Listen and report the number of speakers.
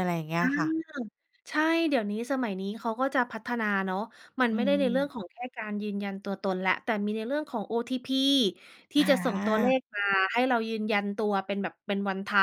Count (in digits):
2